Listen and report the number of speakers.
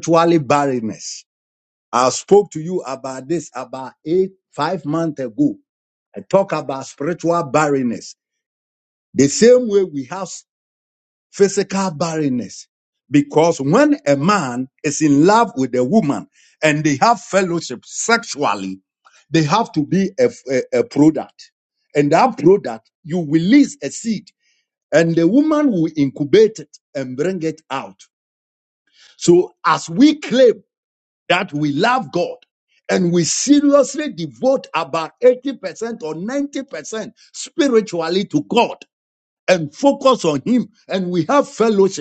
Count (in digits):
1